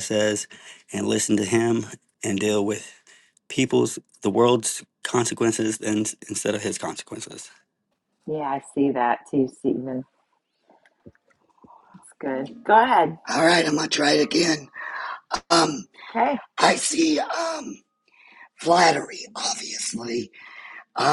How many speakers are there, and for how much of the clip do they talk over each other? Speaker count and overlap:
3, no overlap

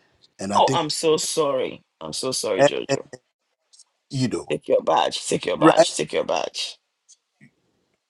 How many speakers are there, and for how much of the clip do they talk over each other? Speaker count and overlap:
2, about 12%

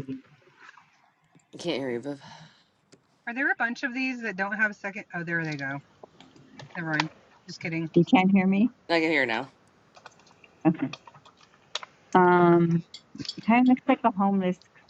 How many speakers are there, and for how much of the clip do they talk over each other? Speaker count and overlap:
3, no overlap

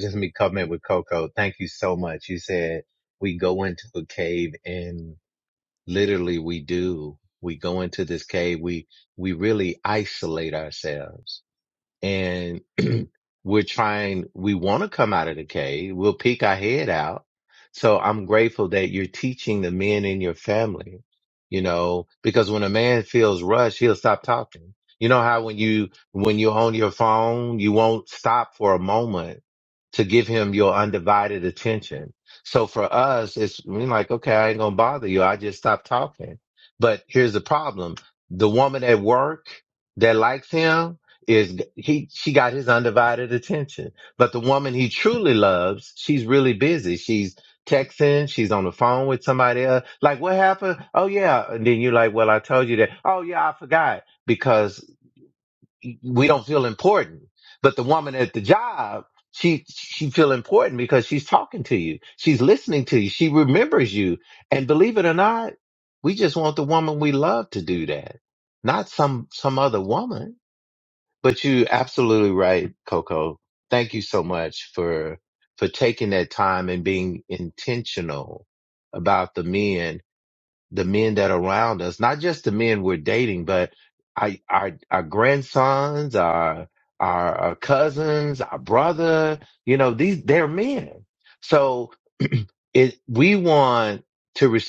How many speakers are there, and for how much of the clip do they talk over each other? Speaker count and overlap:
1, no overlap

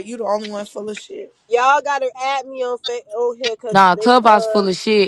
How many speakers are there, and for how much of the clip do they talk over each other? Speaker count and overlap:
3, about 19%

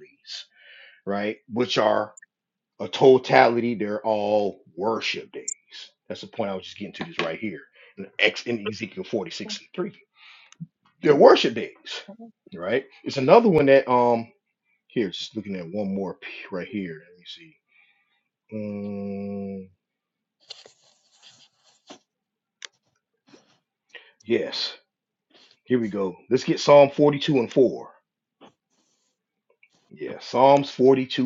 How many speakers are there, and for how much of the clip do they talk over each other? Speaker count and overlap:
1, no overlap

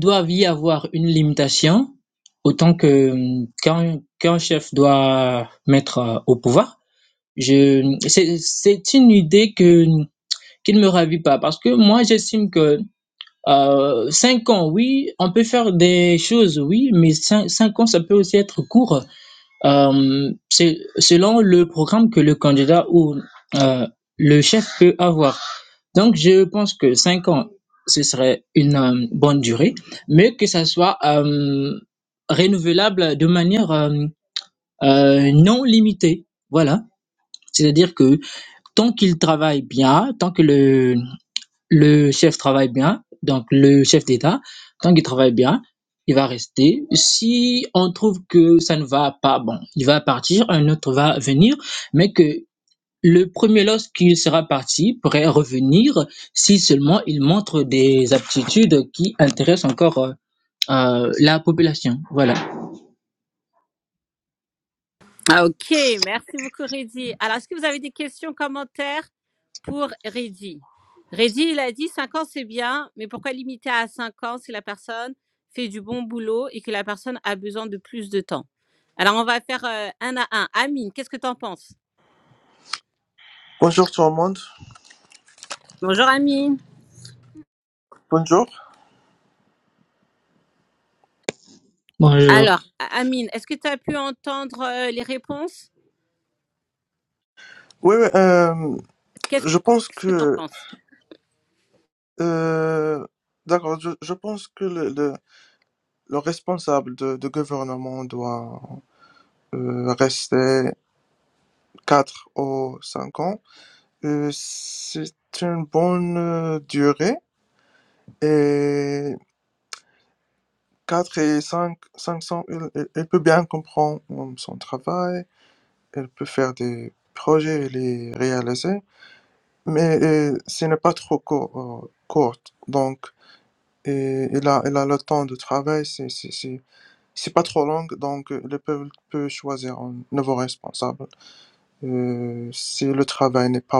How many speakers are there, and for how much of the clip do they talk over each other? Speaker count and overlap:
3, about 1%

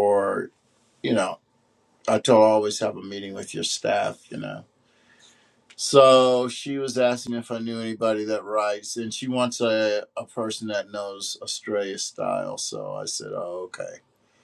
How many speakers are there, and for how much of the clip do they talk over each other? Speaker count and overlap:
1, no overlap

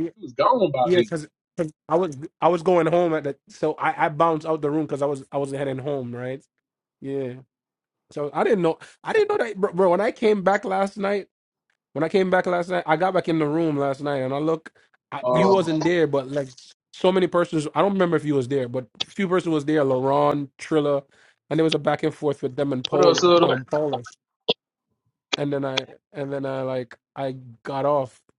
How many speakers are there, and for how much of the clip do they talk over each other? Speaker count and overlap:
2, about 6%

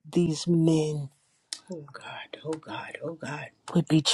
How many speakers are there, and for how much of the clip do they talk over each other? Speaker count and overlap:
2, no overlap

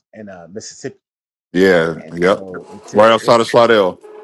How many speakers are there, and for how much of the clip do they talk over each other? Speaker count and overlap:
2, about 21%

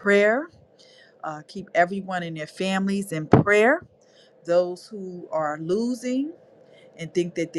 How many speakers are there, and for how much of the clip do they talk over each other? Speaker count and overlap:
1, no overlap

